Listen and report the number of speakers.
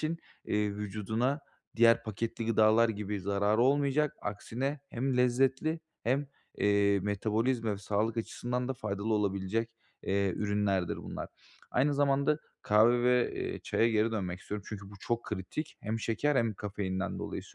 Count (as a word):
one